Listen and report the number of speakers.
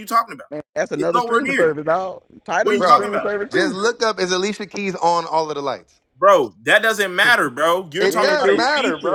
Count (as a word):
three